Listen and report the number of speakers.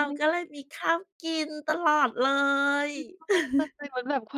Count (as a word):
two